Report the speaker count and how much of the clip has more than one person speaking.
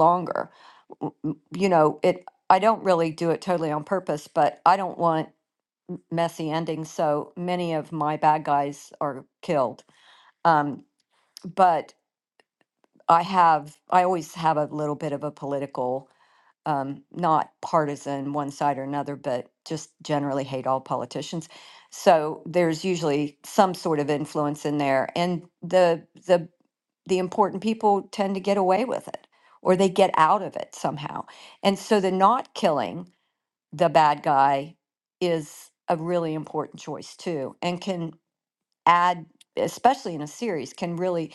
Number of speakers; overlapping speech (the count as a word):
one, no overlap